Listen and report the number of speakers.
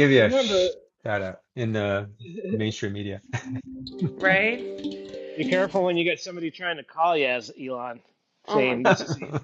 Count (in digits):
3